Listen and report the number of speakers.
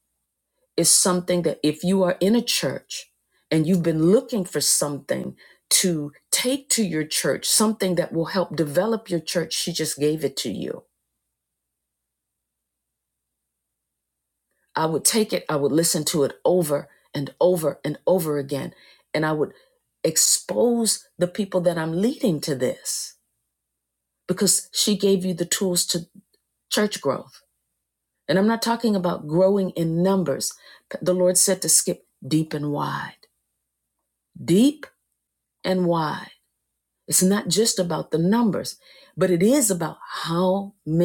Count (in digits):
1